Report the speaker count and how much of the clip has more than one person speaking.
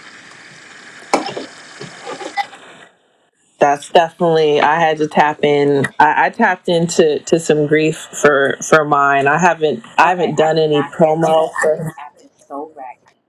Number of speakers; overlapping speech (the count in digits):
2, about 14%